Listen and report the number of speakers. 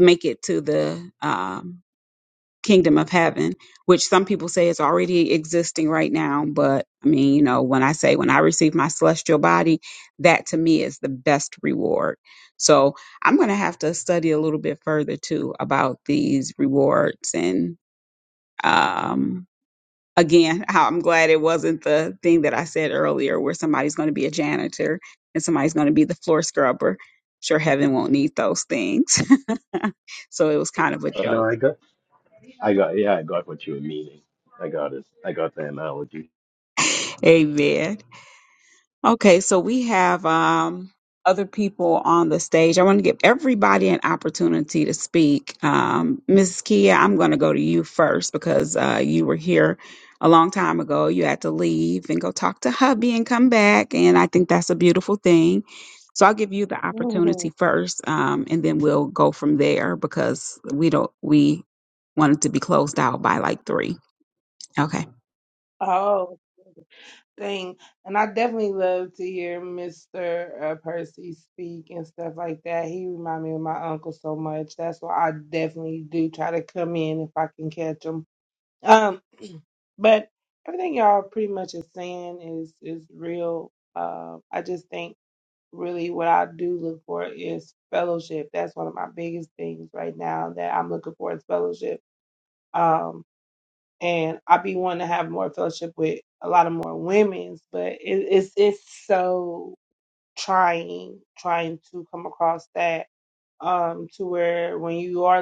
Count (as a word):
three